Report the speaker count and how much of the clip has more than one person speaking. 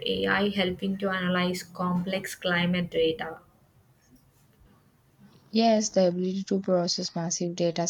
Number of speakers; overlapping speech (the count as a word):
two, no overlap